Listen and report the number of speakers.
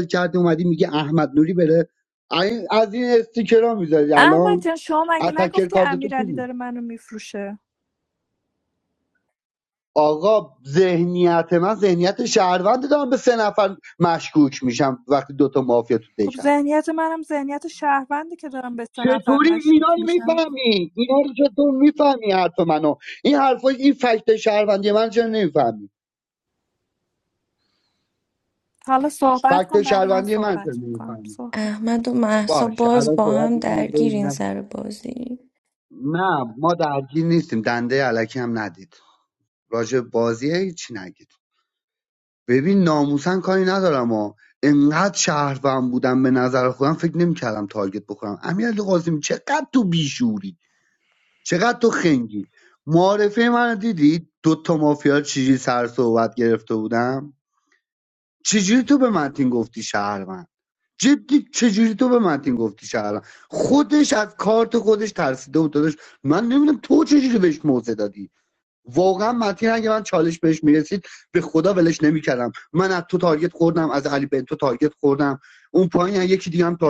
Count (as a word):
three